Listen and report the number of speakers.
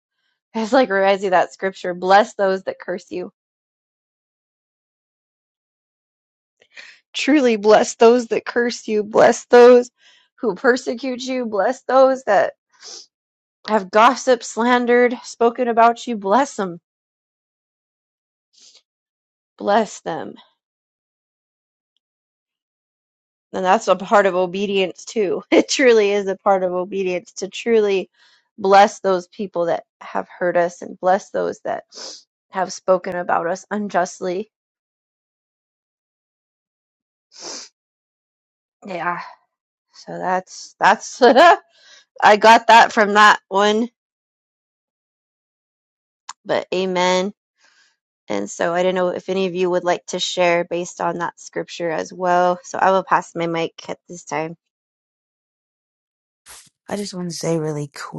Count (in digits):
2